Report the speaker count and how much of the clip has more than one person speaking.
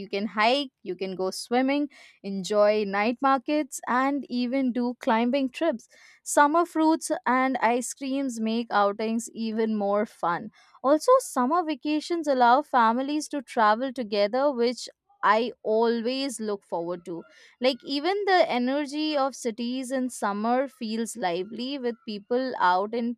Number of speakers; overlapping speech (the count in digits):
1, no overlap